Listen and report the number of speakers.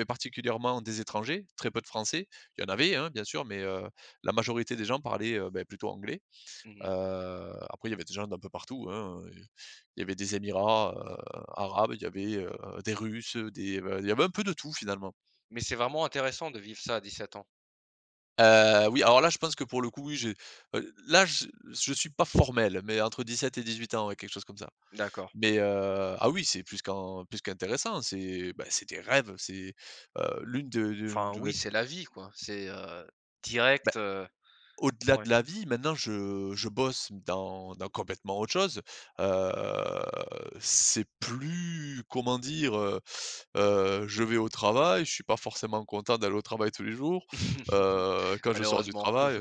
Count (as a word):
two